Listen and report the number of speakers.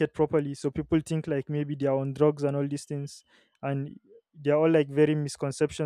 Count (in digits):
1